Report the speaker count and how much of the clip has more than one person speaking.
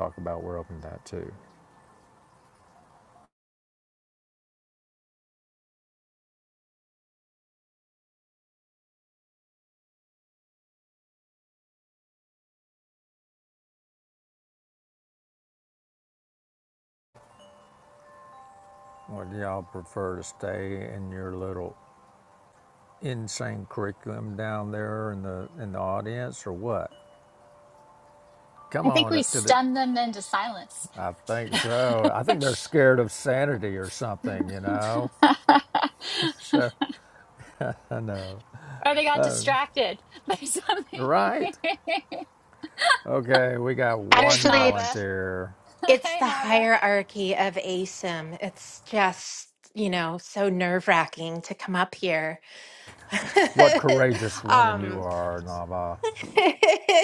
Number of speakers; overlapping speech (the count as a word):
three, about 6%